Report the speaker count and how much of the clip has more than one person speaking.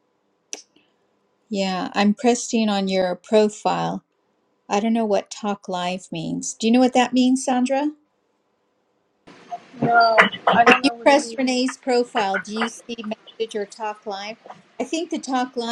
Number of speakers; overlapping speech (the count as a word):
two, about 5%